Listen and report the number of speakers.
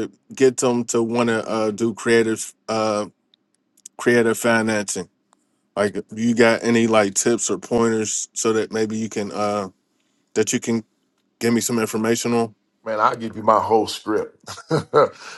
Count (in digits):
2